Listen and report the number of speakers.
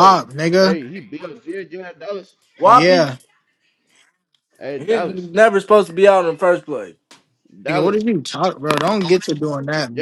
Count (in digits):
3